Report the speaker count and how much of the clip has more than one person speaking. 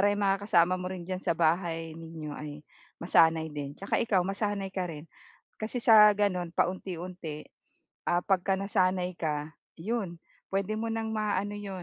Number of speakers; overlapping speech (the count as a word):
one, no overlap